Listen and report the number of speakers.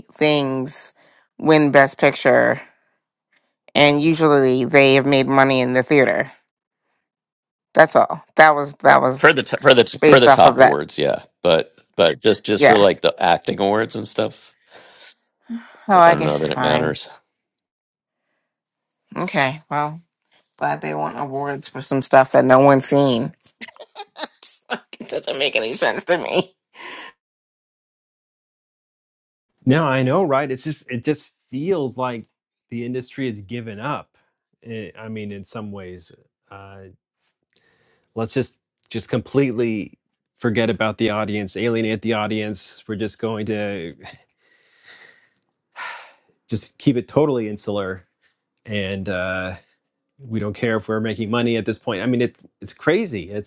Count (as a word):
three